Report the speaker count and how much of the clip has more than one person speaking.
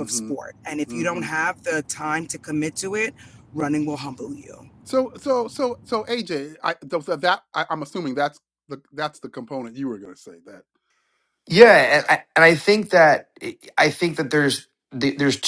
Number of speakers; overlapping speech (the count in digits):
3, about 6%